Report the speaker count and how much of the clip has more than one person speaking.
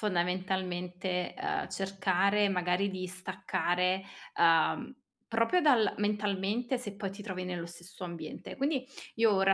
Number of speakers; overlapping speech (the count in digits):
1, no overlap